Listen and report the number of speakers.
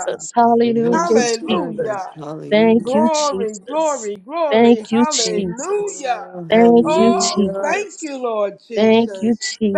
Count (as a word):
three